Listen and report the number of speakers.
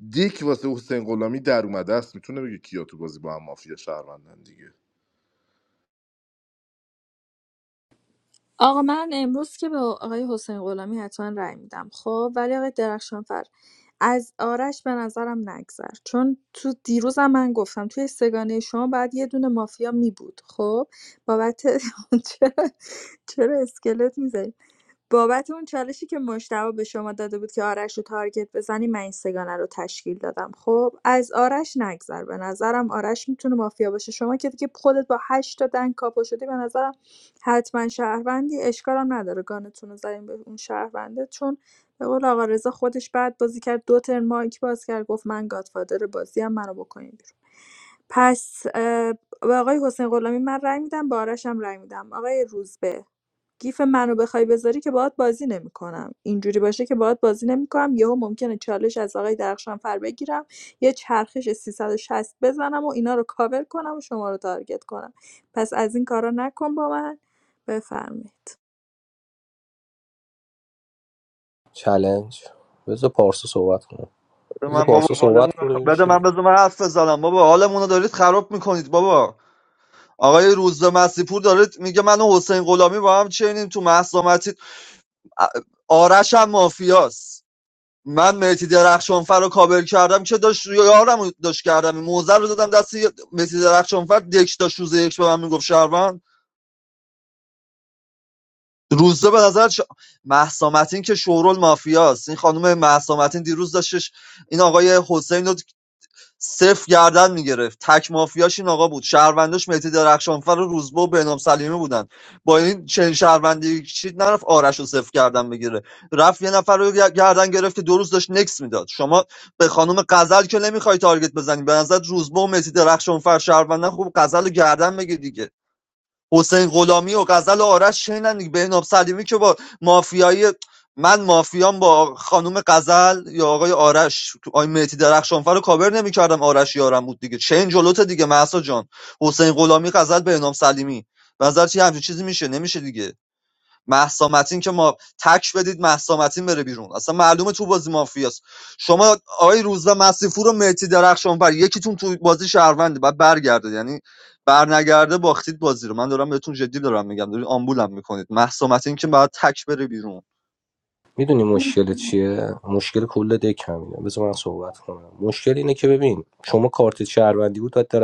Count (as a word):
four